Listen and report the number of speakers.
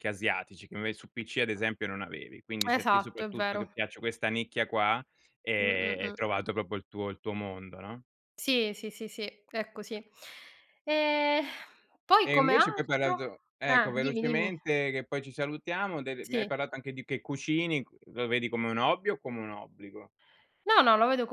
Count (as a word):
two